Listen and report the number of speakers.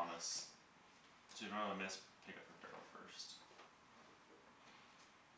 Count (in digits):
1